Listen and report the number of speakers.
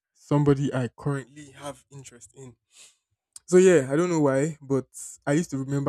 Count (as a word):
one